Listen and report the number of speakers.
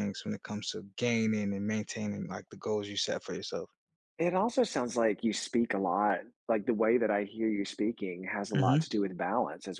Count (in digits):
2